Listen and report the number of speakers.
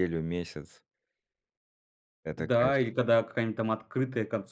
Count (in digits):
2